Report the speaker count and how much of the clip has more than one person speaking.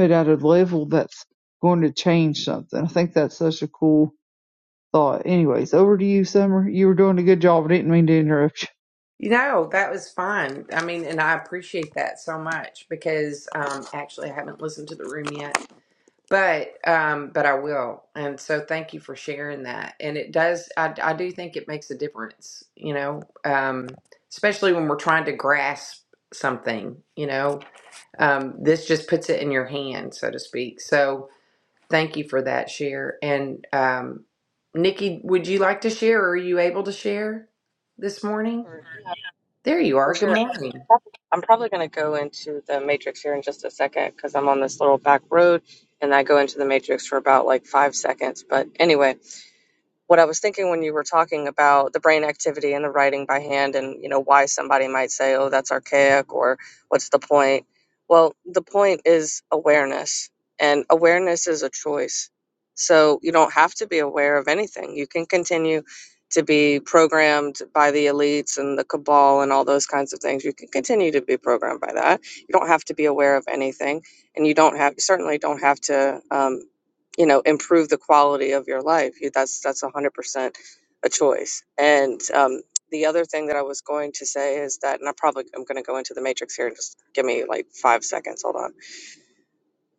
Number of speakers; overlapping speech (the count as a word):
three, under 1%